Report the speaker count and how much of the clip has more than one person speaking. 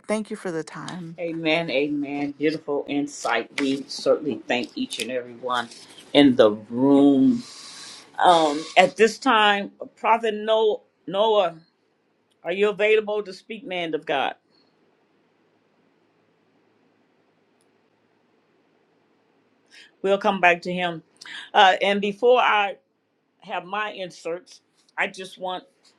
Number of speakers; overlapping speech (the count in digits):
2, no overlap